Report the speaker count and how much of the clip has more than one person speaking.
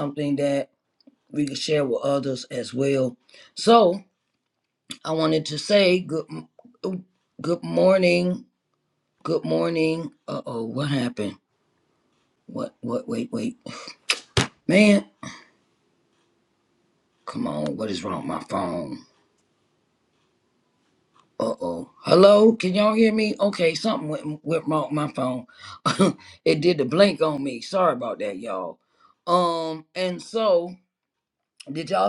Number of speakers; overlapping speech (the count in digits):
1, no overlap